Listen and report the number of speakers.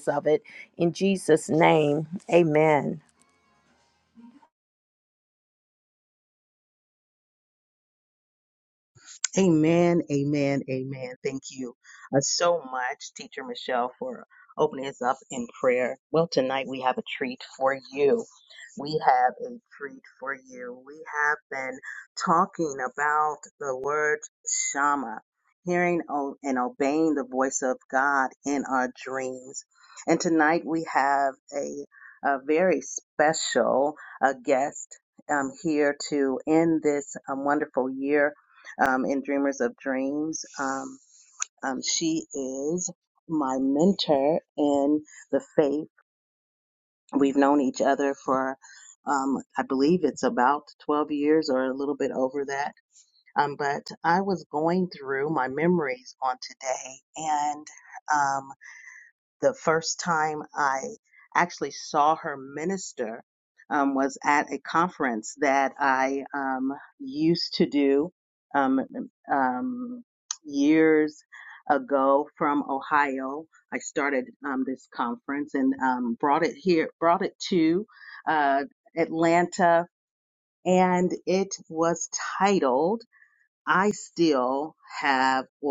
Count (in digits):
2